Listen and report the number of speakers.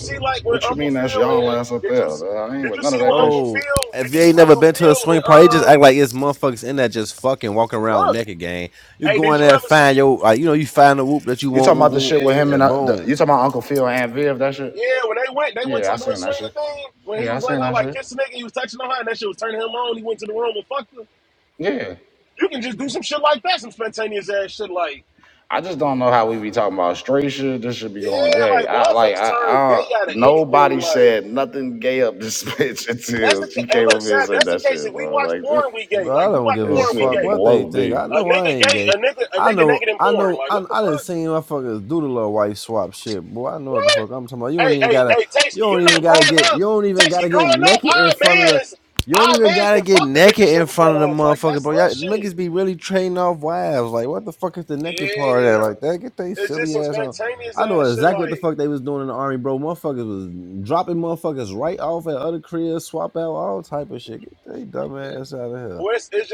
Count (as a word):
three